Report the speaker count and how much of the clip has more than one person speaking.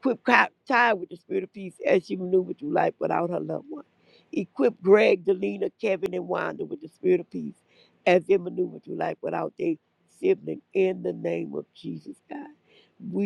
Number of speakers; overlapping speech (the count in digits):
1, no overlap